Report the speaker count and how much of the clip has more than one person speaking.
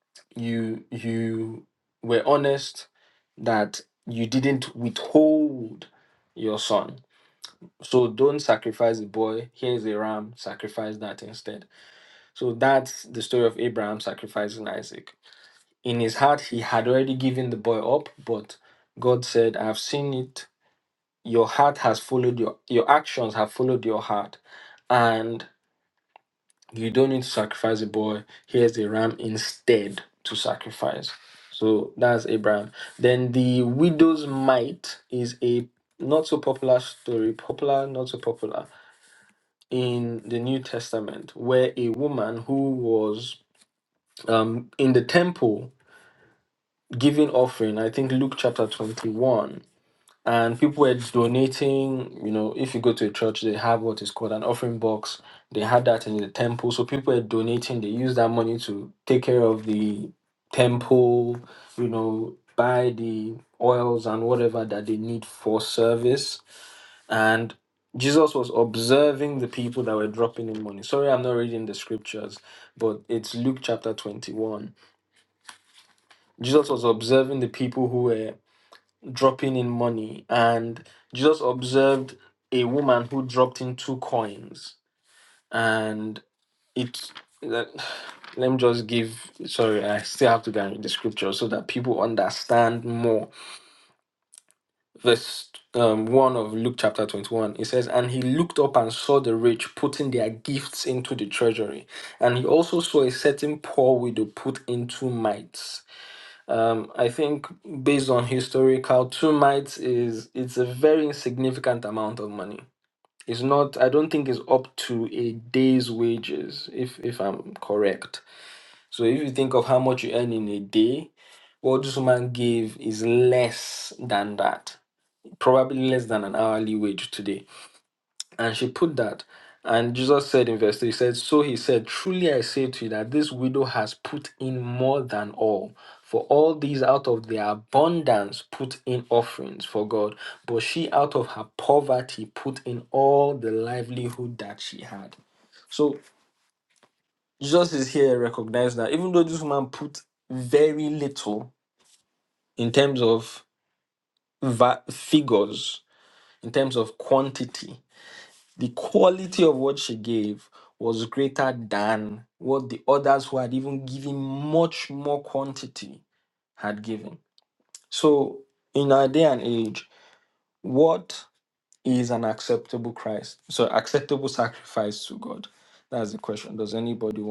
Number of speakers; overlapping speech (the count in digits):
1, no overlap